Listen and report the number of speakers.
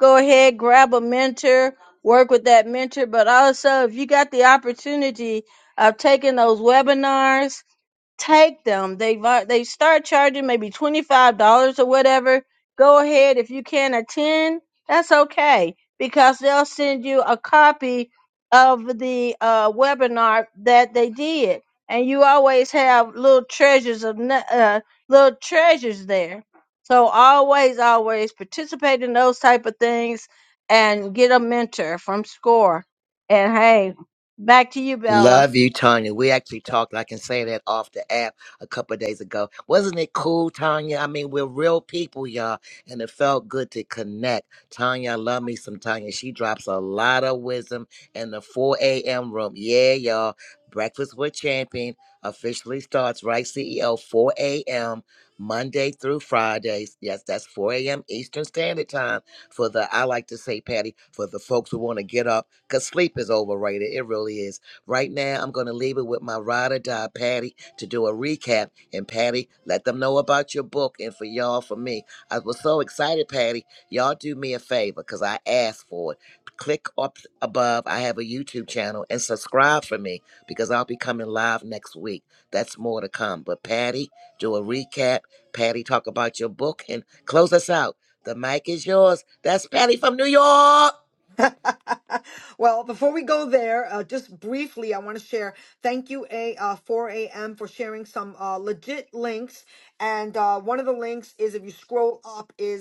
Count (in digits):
3